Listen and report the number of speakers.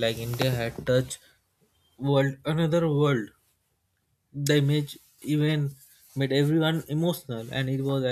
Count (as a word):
one